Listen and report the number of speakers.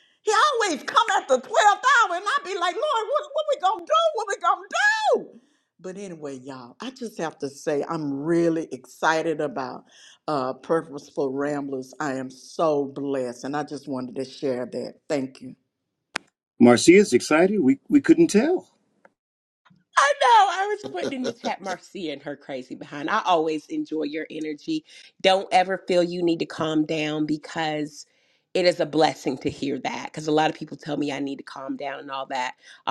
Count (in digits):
3